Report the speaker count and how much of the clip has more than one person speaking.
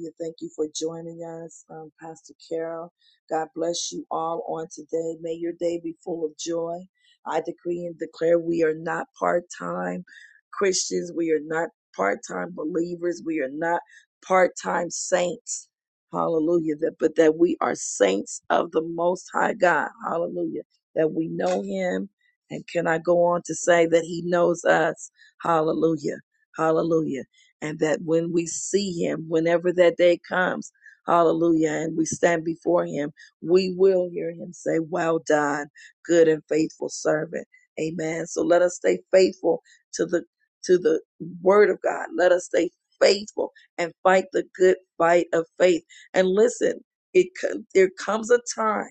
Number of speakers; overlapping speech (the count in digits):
1, no overlap